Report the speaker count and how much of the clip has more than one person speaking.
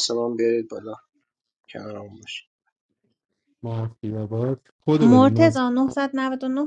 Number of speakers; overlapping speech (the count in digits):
3, about 9%